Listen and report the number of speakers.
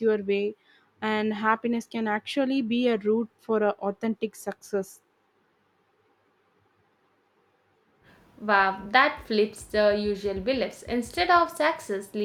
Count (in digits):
2